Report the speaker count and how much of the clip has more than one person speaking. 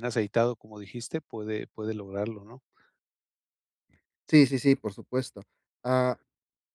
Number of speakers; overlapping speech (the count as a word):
two, no overlap